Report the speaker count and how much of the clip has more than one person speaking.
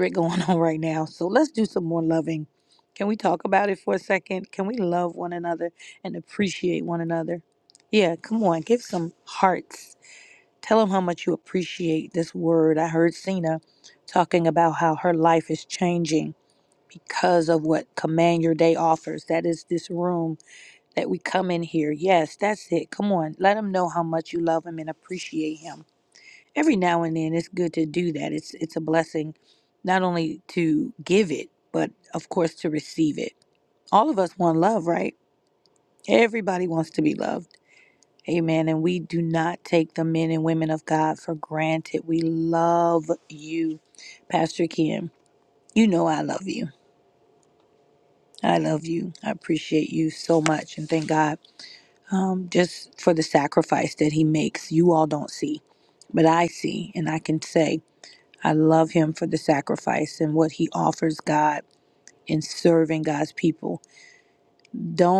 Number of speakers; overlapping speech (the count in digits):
1, no overlap